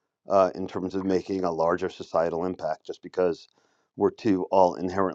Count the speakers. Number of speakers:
1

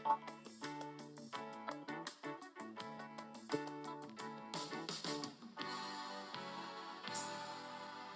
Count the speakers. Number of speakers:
0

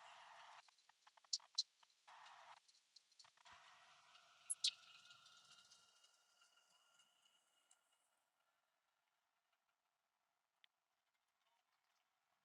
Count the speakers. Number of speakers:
0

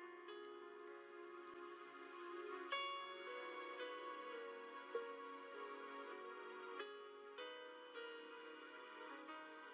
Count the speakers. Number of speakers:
0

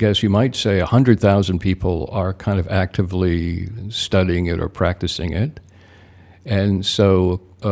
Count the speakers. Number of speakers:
1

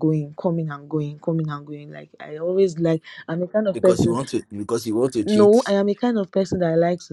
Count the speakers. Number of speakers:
2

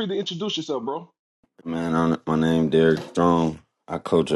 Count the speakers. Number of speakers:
2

